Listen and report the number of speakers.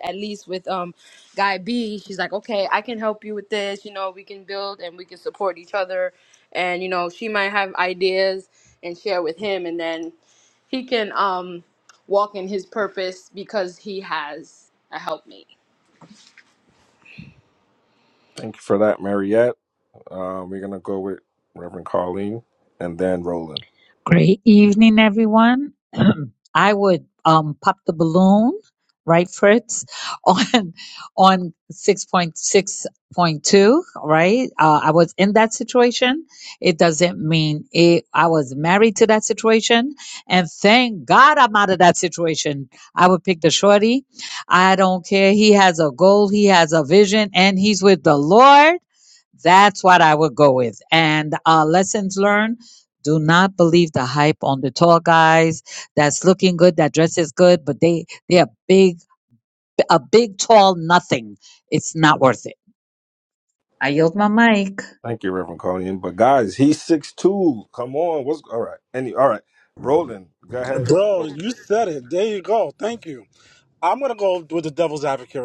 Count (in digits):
4